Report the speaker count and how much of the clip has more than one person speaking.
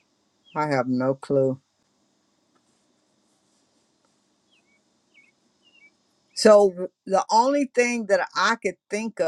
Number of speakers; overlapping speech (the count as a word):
one, no overlap